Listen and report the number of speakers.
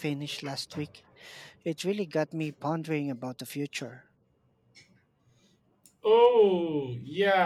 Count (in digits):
2